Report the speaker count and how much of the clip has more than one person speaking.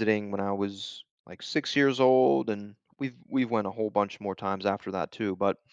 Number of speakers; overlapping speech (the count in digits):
1, no overlap